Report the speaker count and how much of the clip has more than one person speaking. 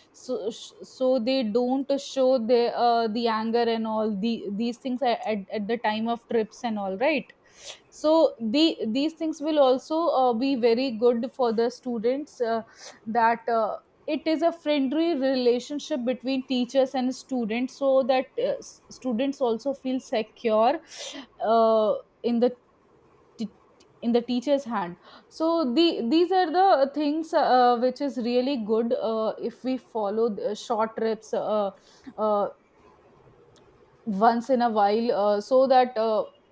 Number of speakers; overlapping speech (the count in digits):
1, no overlap